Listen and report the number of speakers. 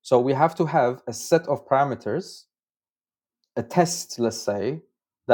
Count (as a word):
one